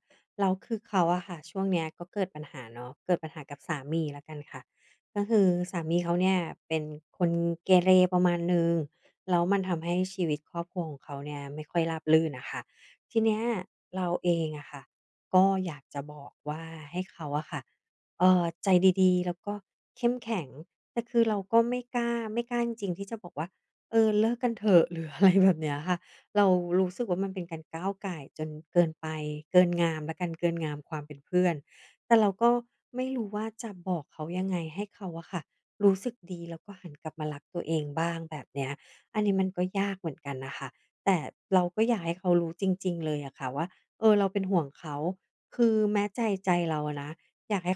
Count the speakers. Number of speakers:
1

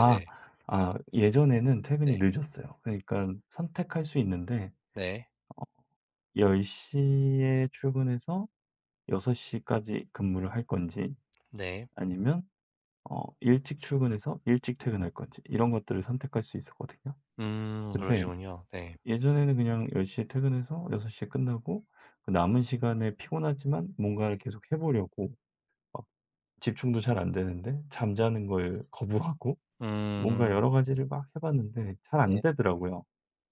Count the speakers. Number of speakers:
2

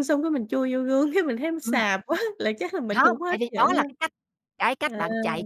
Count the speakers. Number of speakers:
2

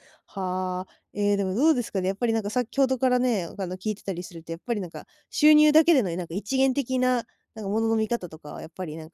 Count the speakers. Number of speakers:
1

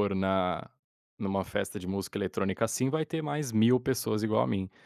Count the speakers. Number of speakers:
1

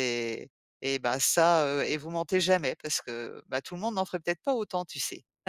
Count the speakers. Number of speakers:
1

